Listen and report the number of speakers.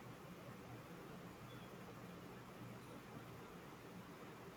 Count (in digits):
0